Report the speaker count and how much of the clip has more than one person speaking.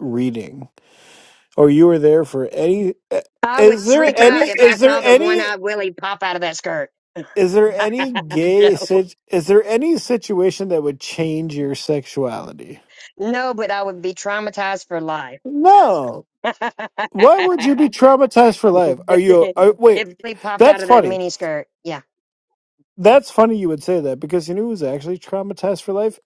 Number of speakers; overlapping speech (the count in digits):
2, about 14%